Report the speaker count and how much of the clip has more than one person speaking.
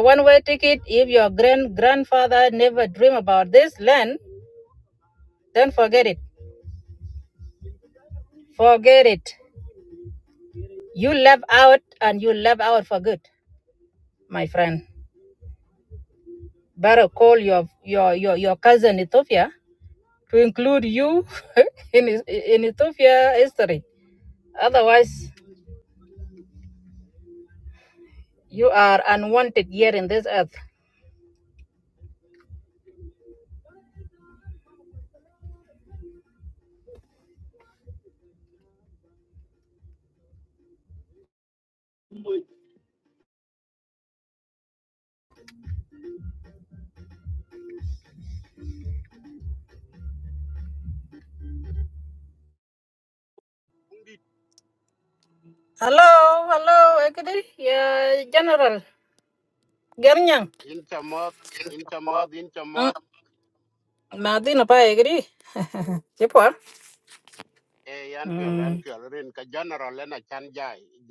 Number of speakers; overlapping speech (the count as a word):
two, about 1%